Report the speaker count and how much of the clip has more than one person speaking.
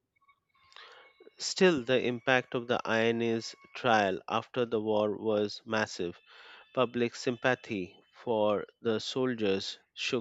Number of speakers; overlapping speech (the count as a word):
one, no overlap